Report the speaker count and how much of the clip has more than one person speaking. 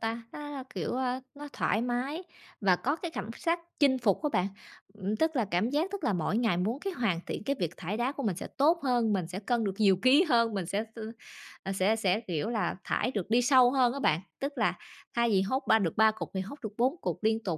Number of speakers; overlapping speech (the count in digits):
1, no overlap